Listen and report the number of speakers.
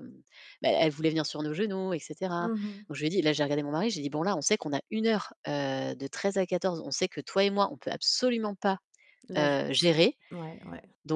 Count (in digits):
2